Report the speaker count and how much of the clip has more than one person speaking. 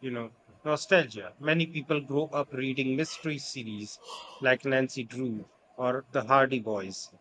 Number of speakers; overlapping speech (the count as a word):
one, no overlap